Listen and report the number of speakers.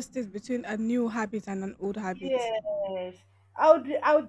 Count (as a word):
two